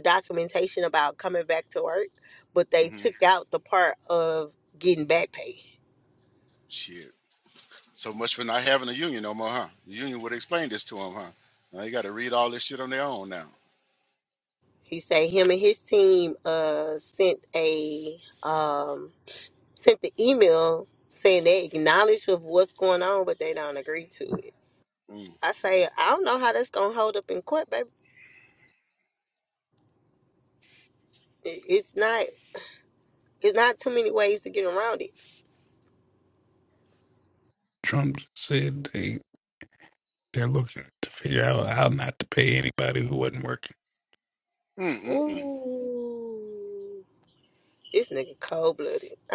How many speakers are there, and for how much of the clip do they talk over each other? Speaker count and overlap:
three, about 1%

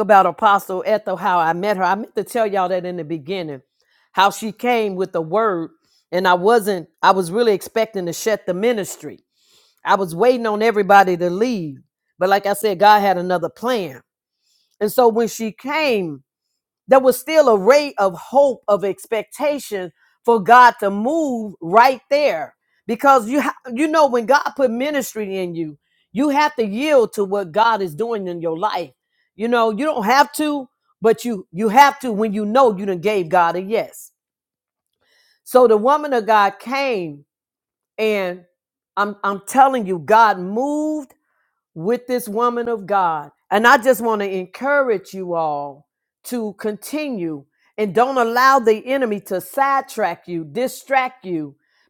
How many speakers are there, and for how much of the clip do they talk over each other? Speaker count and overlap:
one, no overlap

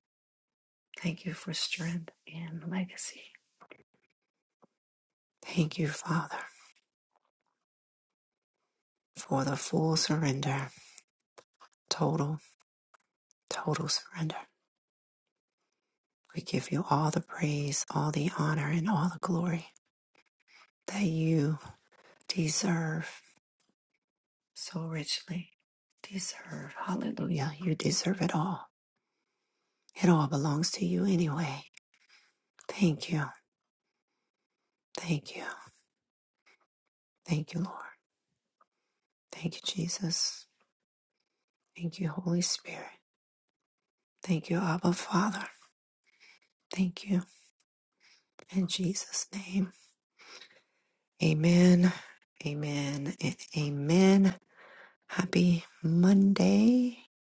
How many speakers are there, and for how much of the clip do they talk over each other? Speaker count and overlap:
one, no overlap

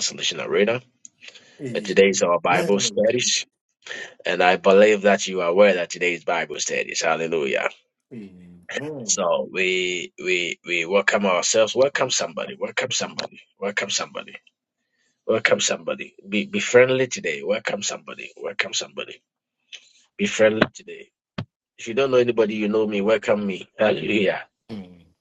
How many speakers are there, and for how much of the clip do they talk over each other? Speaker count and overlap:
two, about 4%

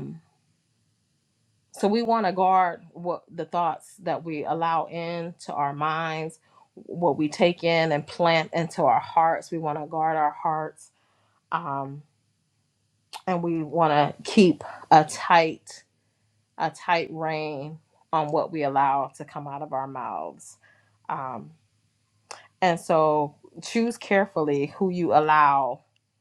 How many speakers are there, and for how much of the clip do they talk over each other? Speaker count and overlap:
one, no overlap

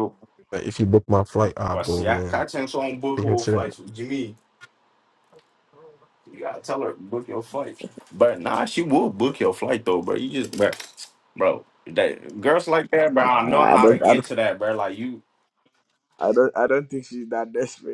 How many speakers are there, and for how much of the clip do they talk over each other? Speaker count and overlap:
three, about 12%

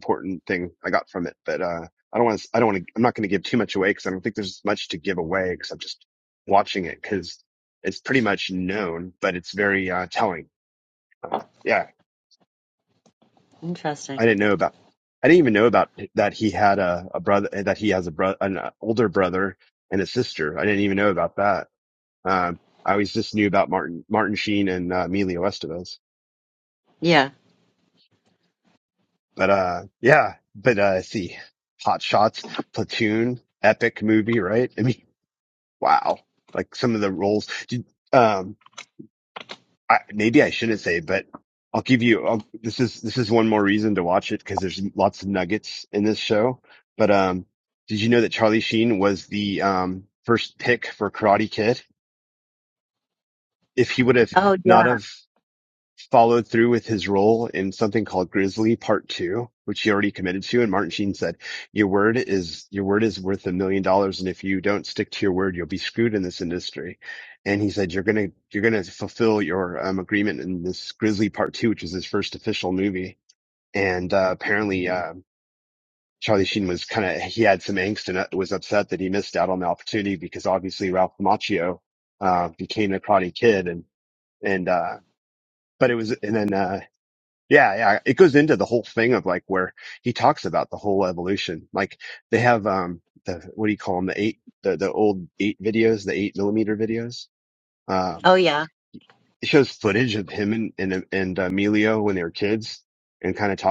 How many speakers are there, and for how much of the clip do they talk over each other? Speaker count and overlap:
two, under 1%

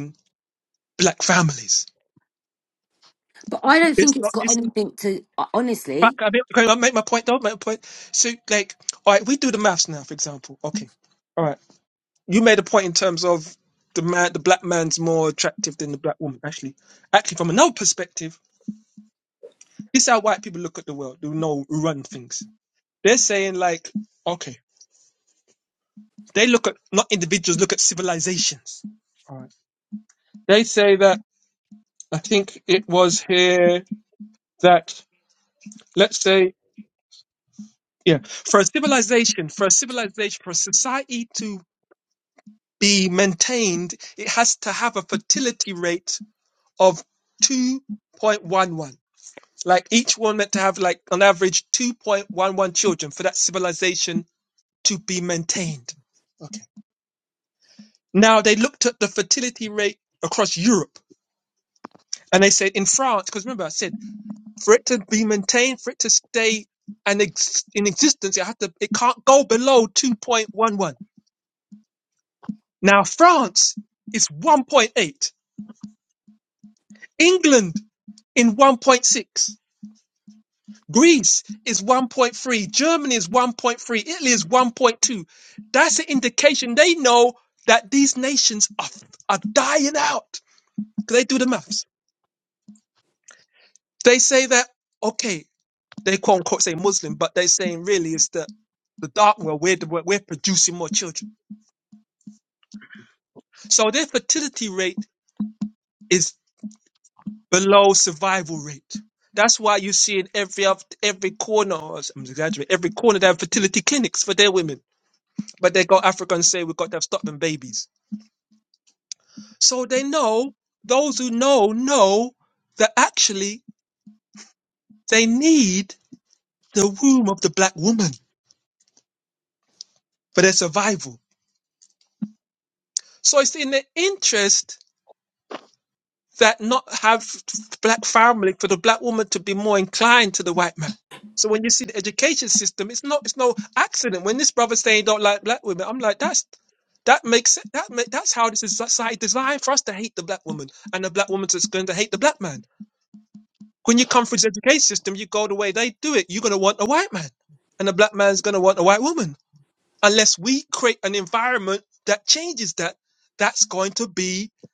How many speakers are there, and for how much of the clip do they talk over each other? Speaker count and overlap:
two, under 1%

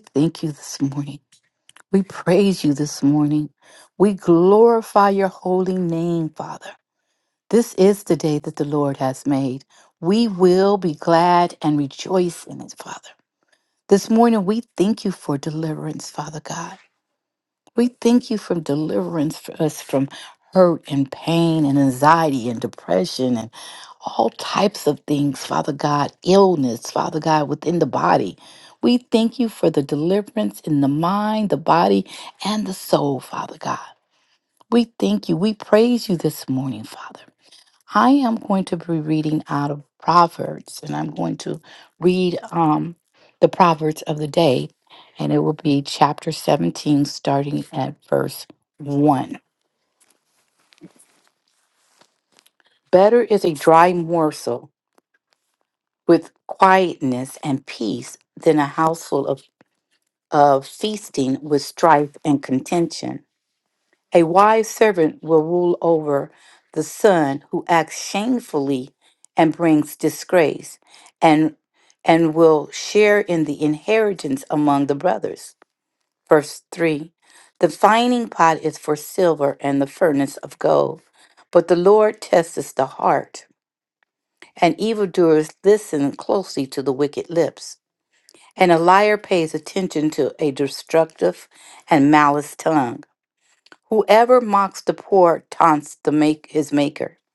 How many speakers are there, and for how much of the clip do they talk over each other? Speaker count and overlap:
one, no overlap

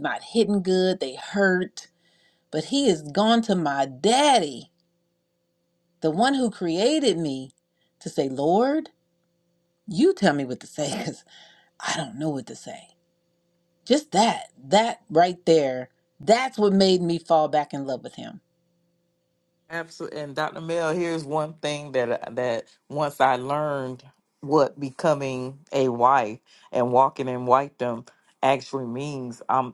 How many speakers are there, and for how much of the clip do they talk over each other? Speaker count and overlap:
two, no overlap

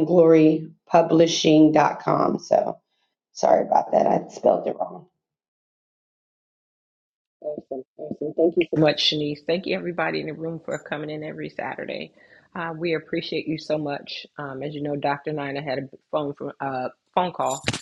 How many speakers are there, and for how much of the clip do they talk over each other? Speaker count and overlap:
two, no overlap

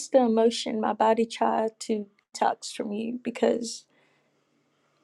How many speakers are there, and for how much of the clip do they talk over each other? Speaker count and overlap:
one, no overlap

